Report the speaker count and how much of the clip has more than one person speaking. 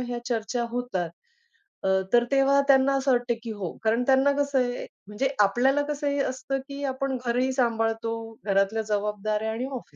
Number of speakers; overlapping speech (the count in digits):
1, no overlap